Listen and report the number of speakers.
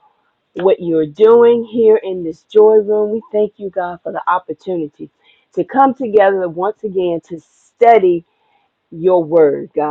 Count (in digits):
1